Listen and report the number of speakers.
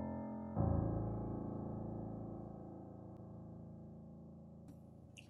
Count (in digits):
0